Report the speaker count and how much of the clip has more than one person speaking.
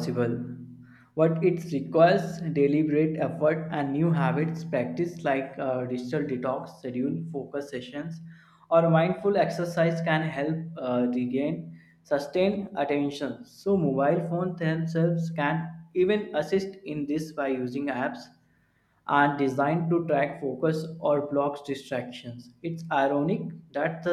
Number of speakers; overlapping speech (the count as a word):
one, no overlap